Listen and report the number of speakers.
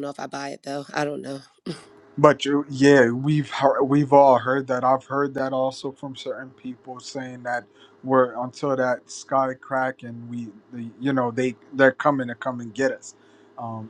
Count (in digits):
2